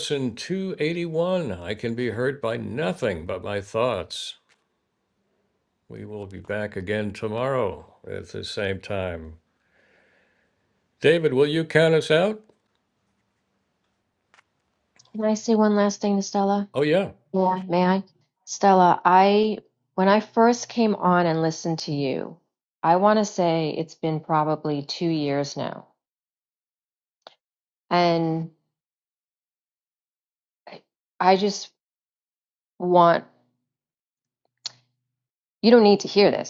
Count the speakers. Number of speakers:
2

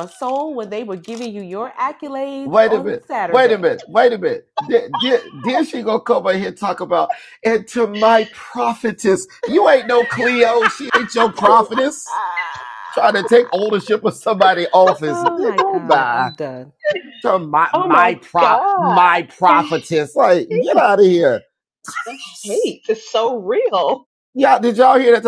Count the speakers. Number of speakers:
3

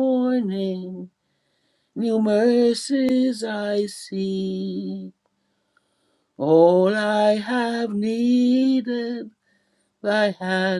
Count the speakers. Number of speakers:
1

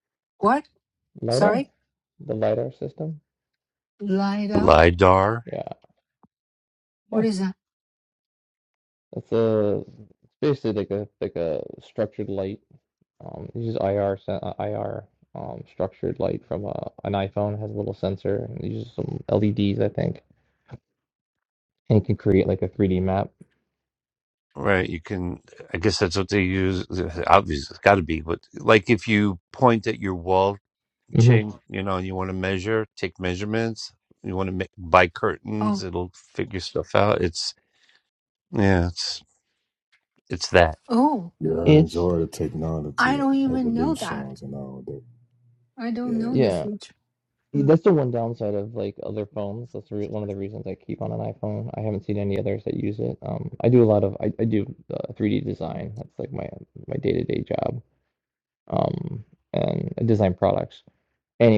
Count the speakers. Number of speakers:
4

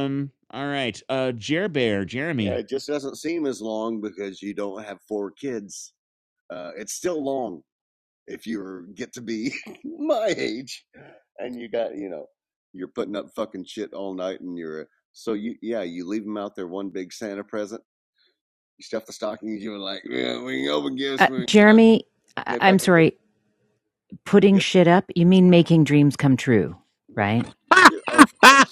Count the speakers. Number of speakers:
3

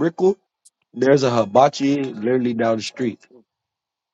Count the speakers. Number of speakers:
1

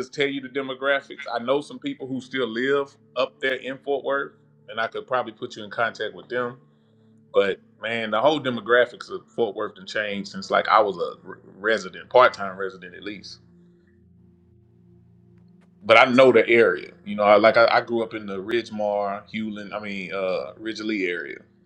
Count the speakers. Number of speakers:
1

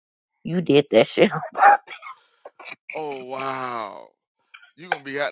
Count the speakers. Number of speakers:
2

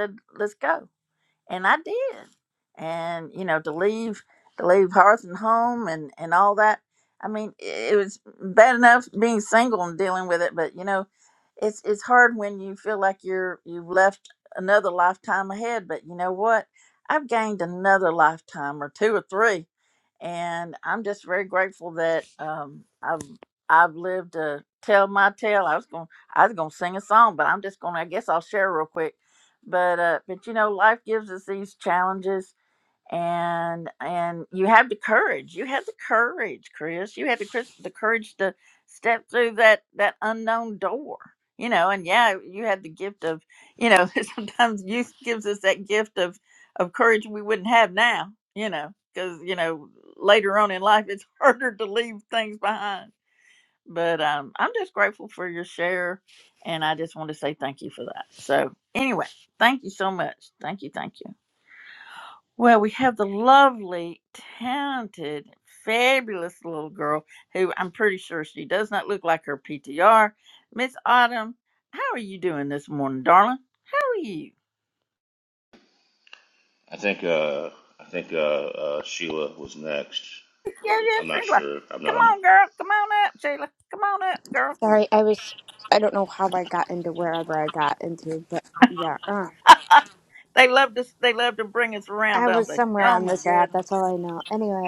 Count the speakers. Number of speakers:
3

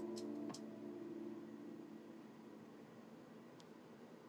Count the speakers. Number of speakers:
0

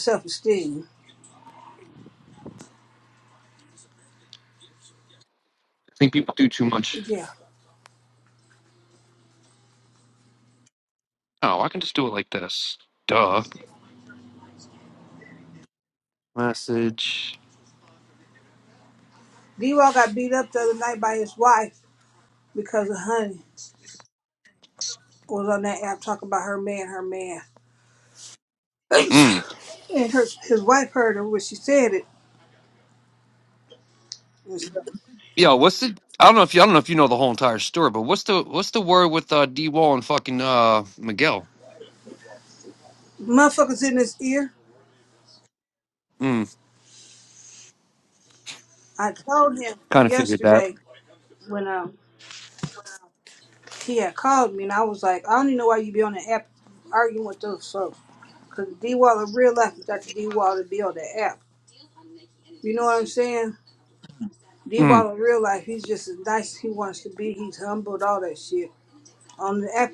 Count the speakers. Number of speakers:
2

